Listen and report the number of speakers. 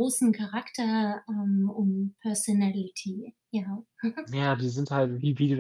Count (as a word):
two